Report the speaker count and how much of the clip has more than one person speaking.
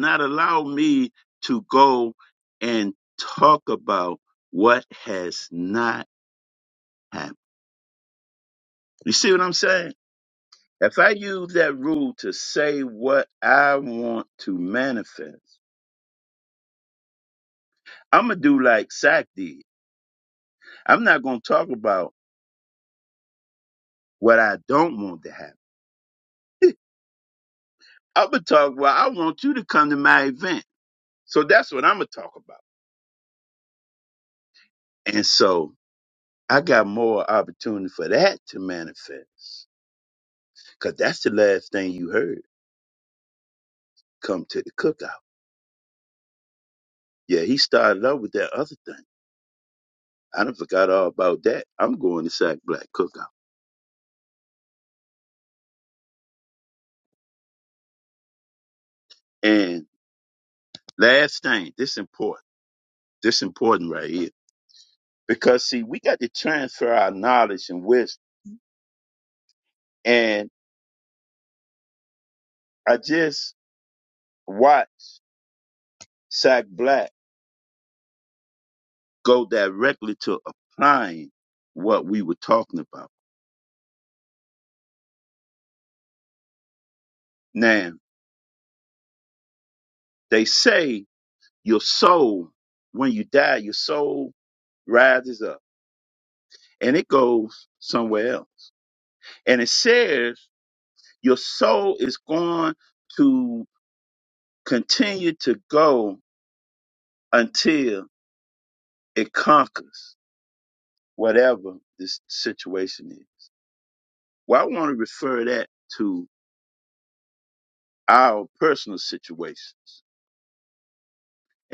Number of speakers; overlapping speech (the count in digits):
1, no overlap